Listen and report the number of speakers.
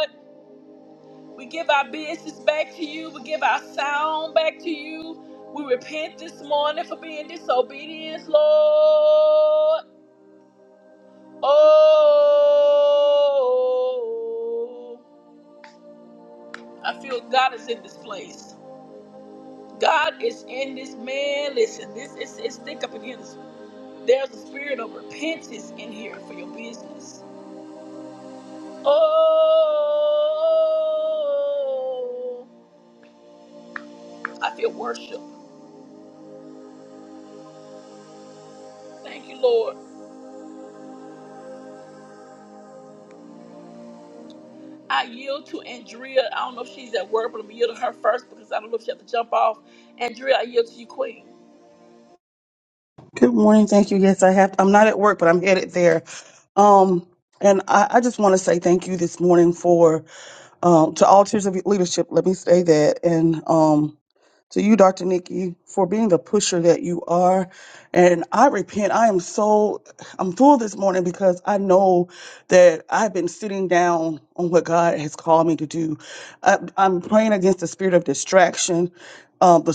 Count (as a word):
two